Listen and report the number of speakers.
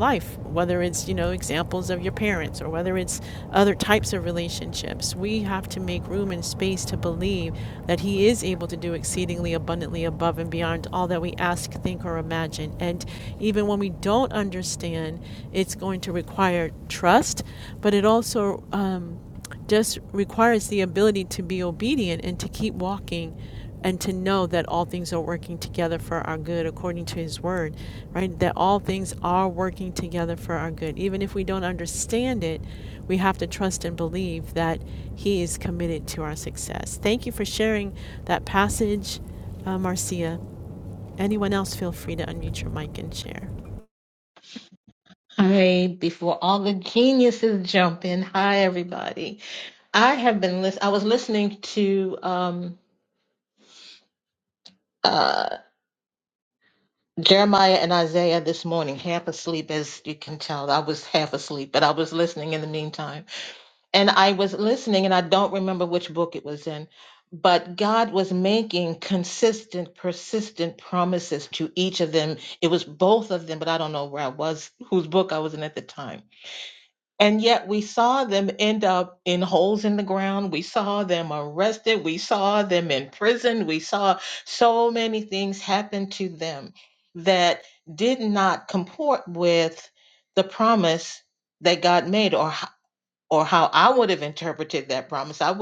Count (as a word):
two